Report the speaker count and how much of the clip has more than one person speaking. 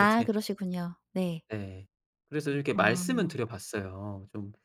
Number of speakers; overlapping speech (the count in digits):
2, about 18%